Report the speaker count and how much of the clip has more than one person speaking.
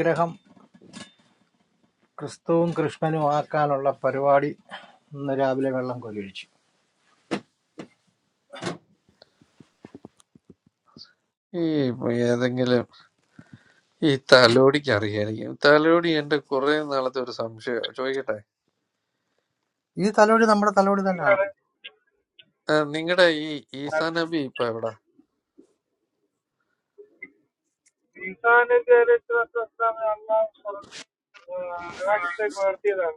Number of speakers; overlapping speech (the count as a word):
three, no overlap